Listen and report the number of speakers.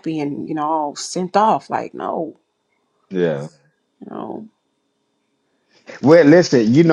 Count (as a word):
two